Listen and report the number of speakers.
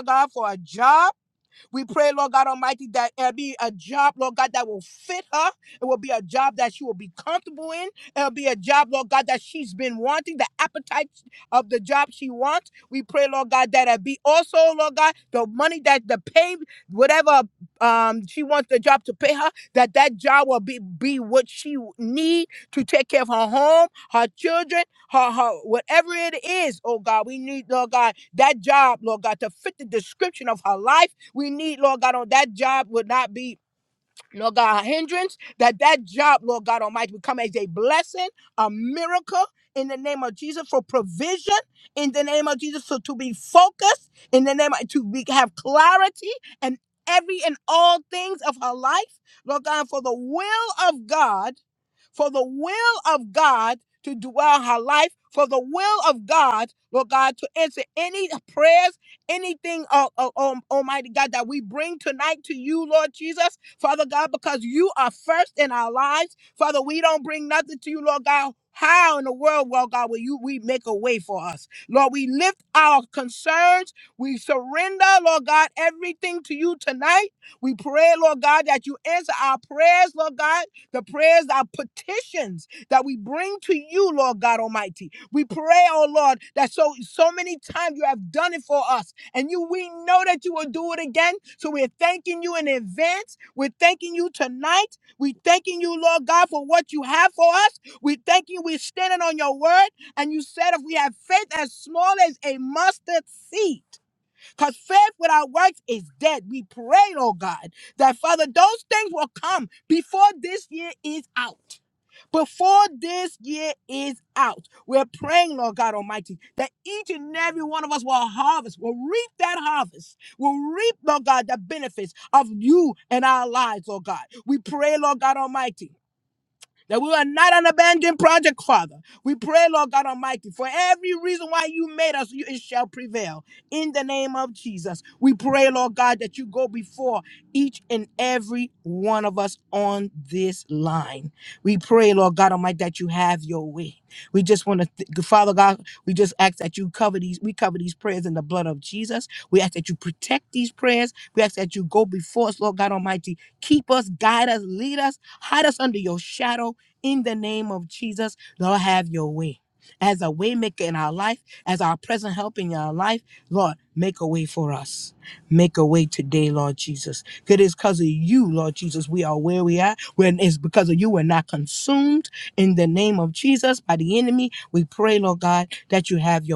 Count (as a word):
one